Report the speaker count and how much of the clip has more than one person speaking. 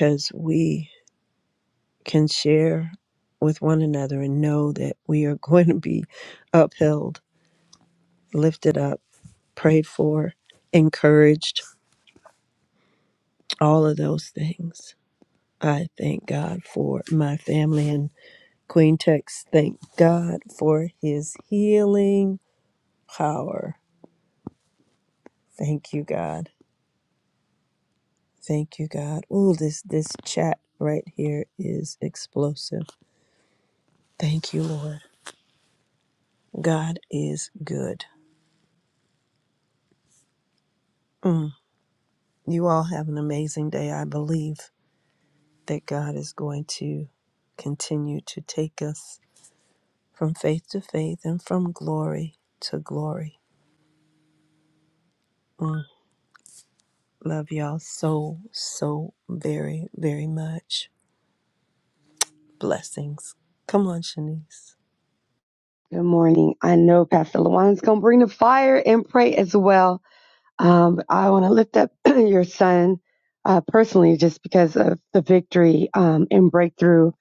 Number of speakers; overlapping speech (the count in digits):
2, no overlap